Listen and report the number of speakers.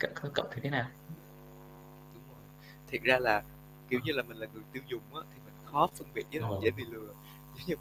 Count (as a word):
two